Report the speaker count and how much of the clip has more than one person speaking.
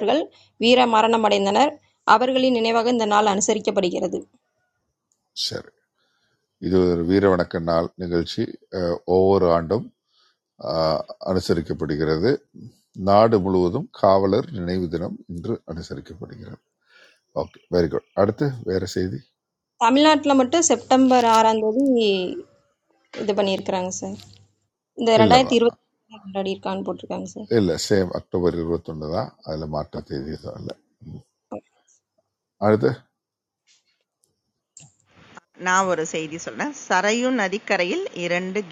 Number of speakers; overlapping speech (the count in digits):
3, about 1%